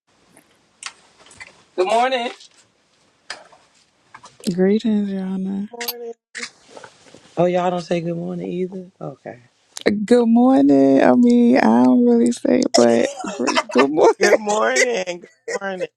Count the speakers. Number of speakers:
3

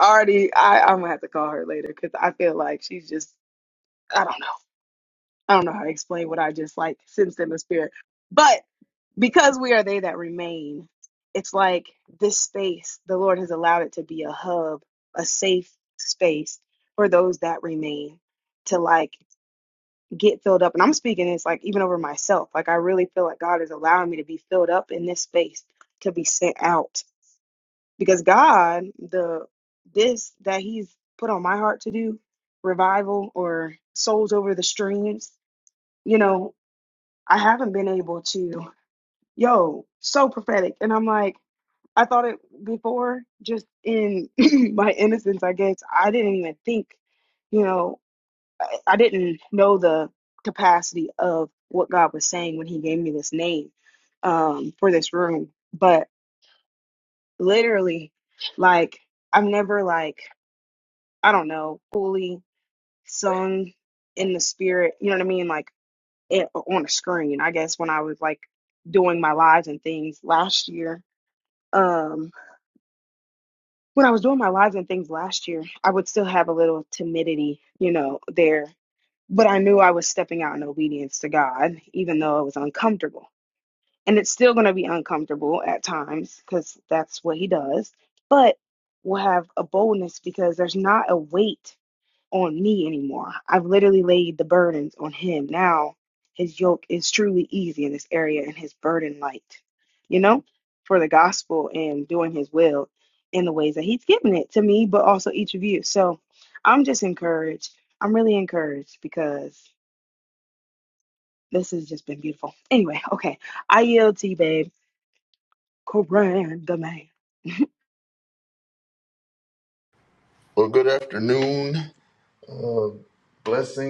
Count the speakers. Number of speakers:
2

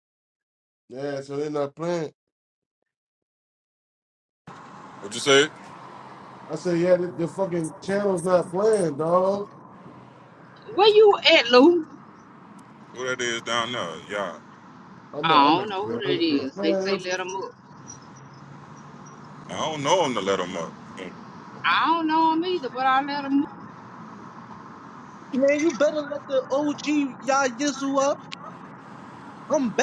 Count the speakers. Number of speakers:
4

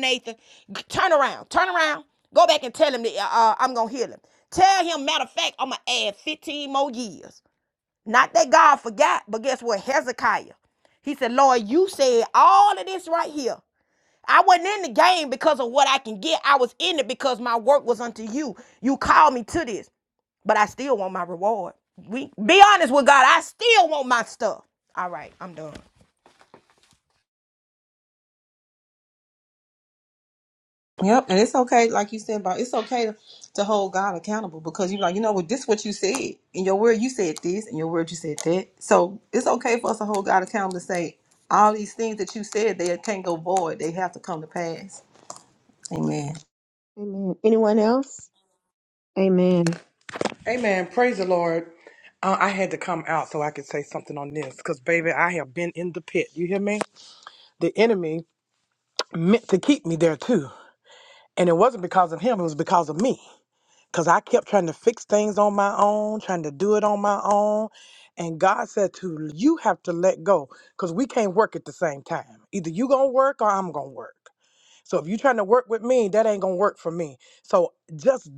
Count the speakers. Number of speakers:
4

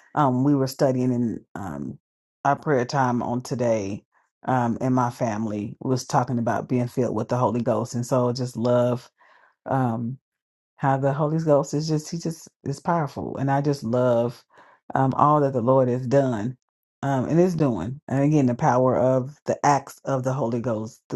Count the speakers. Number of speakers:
1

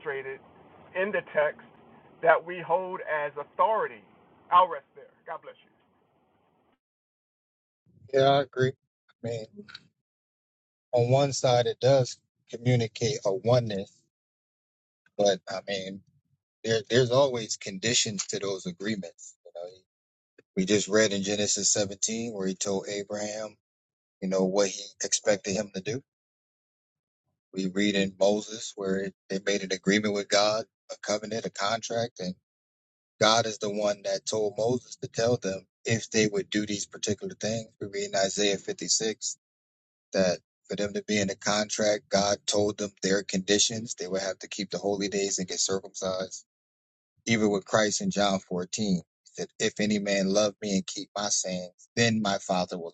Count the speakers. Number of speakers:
2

